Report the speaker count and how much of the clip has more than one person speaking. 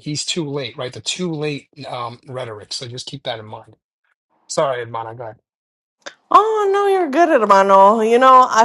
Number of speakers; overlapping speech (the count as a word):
two, no overlap